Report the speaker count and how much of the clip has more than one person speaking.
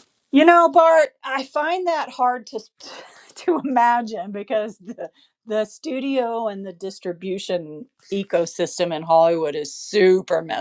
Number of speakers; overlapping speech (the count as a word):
one, no overlap